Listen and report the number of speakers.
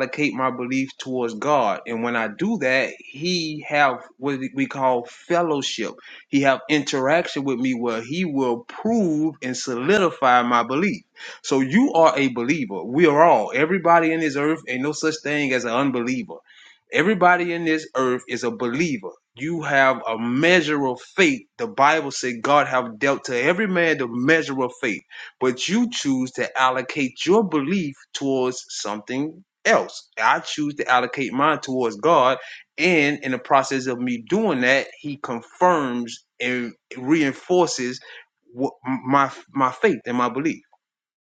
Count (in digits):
1